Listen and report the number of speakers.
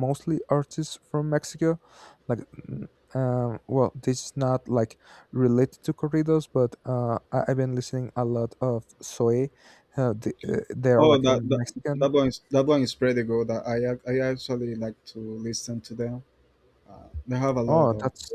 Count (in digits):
2